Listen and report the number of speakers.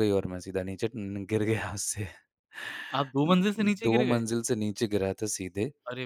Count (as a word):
two